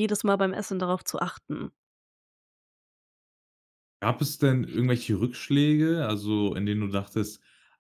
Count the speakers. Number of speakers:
two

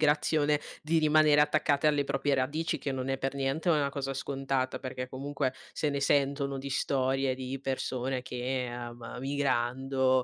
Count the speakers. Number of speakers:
one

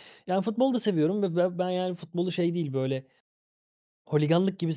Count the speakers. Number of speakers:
one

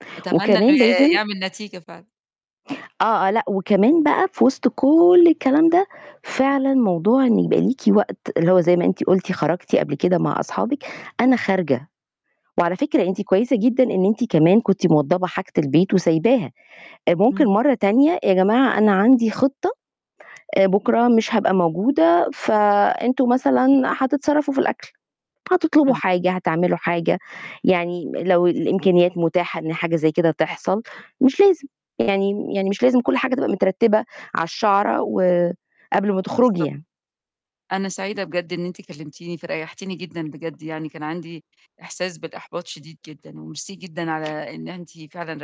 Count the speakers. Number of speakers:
two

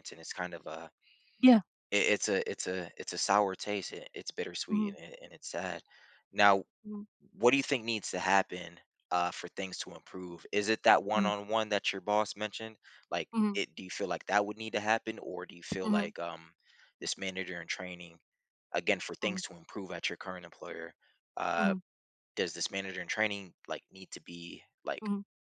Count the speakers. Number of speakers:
two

